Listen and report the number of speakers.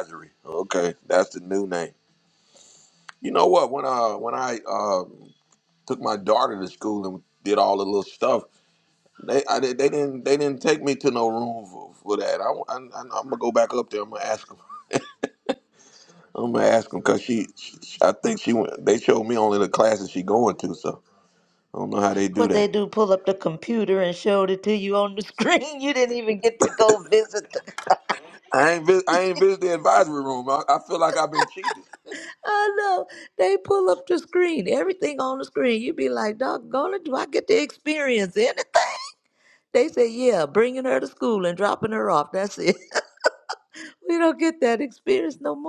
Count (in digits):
2